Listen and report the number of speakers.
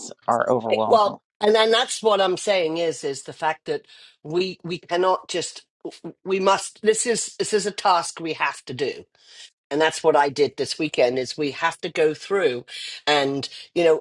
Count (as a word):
two